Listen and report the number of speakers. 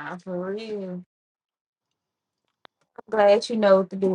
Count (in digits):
1